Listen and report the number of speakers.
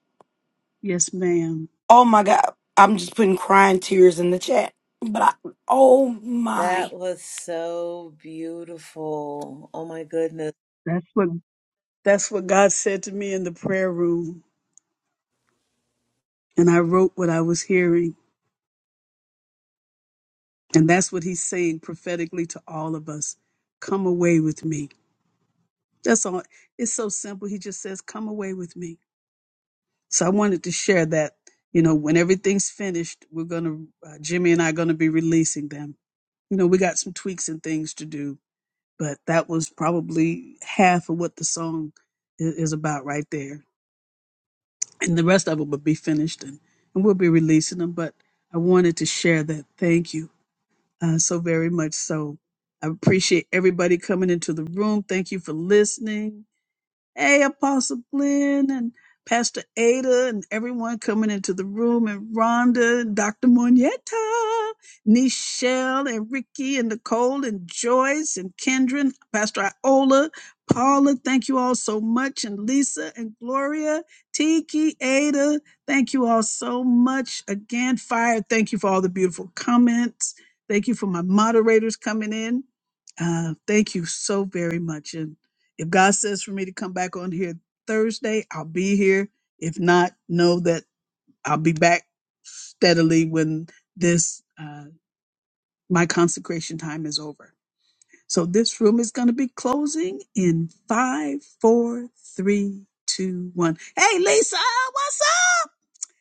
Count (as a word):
three